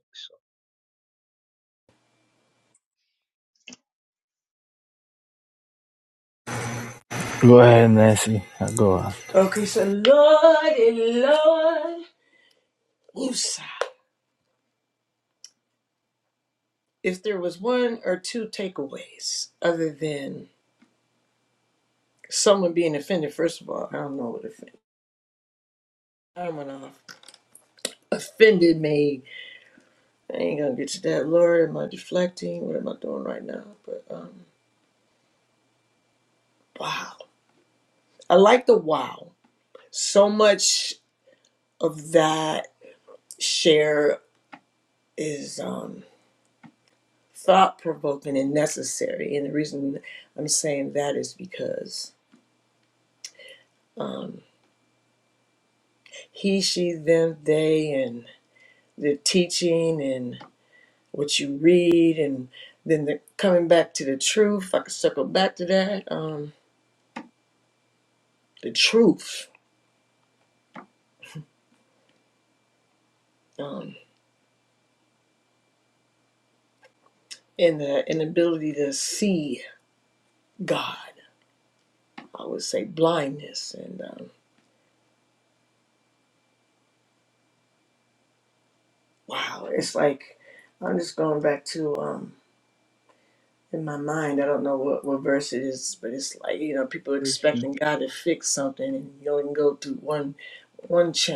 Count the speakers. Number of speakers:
2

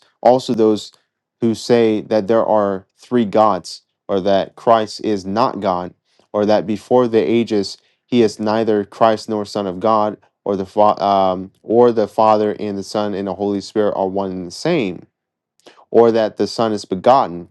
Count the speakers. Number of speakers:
1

